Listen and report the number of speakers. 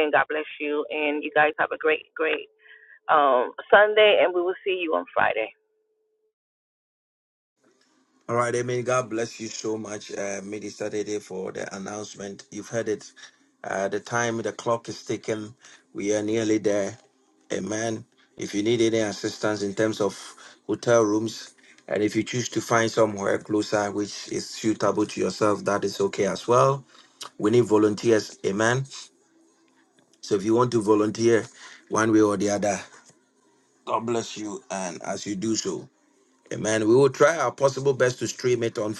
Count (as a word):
two